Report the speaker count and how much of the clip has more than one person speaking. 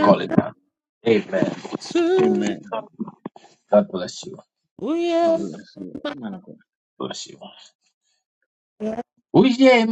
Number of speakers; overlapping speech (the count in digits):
3, about 12%